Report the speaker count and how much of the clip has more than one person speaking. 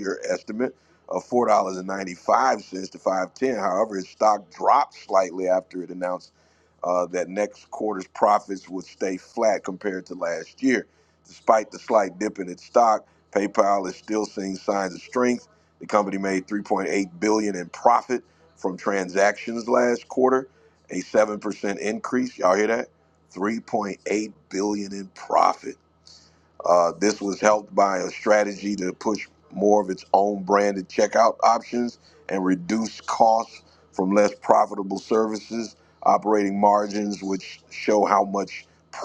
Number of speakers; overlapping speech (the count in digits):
1, no overlap